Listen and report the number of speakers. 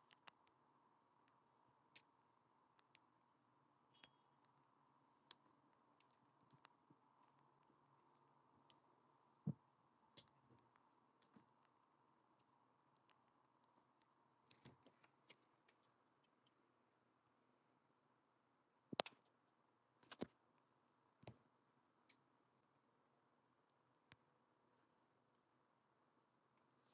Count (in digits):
0